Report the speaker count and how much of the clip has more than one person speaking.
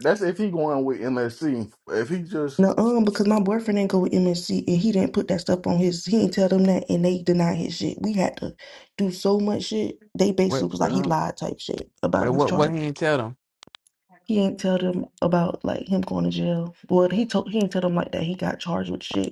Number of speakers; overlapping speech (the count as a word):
three, about 4%